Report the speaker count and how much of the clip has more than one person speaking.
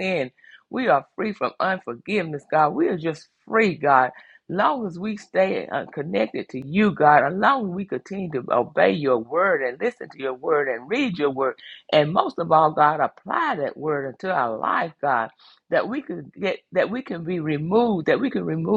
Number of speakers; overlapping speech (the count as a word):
one, no overlap